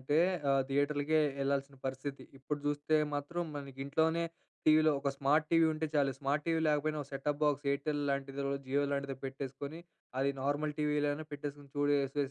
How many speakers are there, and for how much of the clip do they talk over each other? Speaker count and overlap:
one, no overlap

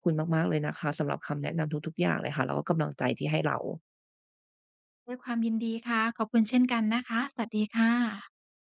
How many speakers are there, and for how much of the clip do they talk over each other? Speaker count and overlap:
two, no overlap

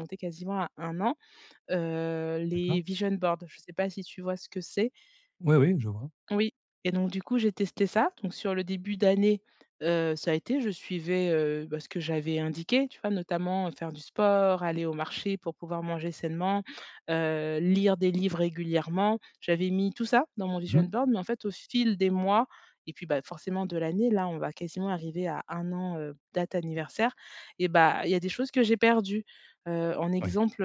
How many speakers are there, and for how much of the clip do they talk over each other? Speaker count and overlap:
two, about 2%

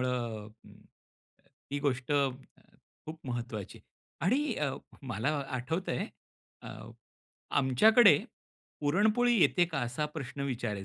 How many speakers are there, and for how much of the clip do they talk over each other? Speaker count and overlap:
one, no overlap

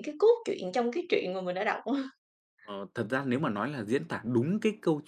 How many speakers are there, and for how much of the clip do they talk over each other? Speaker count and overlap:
two, no overlap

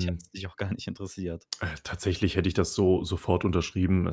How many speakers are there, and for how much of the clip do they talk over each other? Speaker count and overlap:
two, about 4%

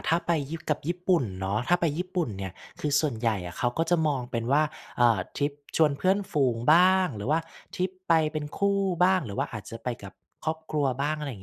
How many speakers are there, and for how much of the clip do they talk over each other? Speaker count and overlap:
one, no overlap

